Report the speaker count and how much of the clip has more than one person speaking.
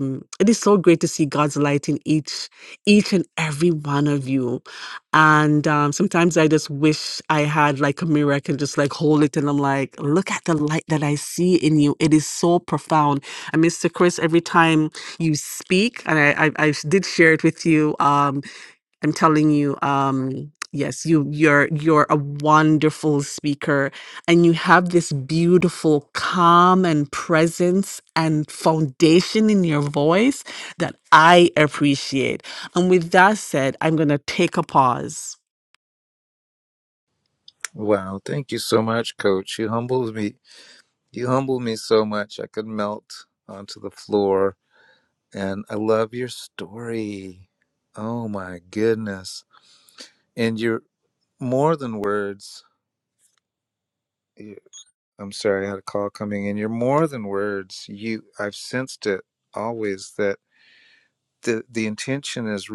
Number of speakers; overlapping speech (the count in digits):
2, no overlap